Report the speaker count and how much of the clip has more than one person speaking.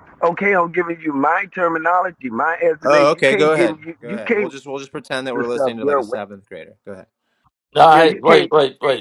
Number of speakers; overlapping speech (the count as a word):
three, about 34%